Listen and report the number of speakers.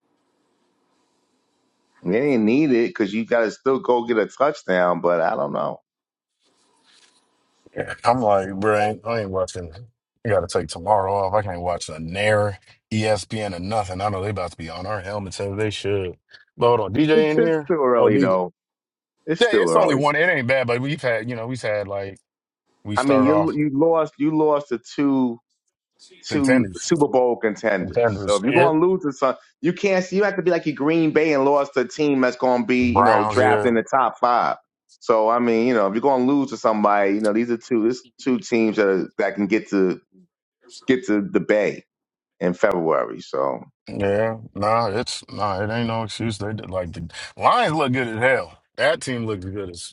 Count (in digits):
2